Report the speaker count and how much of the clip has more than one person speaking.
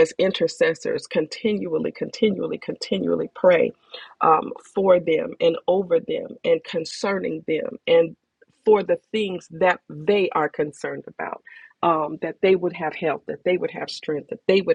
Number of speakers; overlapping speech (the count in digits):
1, no overlap